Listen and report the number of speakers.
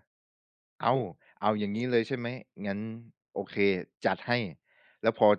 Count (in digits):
1